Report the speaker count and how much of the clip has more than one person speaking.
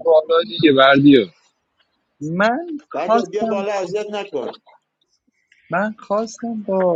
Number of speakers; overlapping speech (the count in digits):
3, about 10%